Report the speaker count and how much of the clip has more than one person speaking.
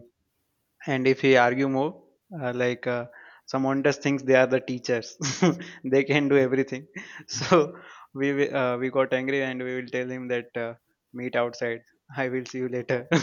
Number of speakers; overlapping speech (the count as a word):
one, no overlap